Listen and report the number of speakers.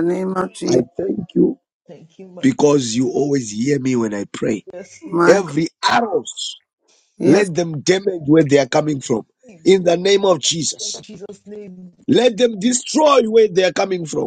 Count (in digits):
3